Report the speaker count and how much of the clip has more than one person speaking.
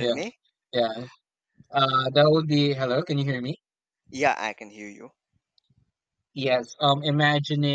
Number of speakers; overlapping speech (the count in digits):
2, no overlap